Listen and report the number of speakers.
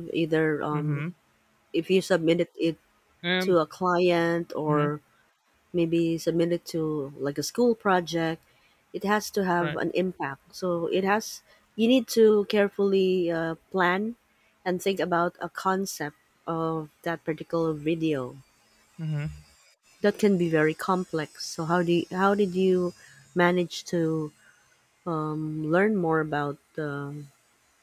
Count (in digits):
2